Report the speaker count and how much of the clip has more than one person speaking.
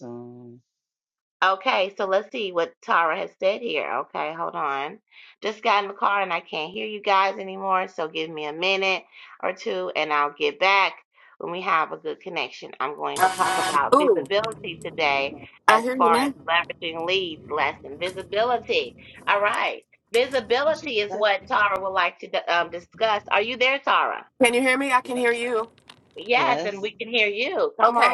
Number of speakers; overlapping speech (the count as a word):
three, about 8%